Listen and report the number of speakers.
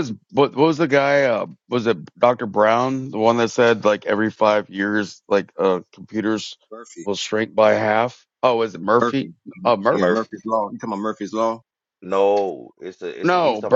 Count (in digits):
3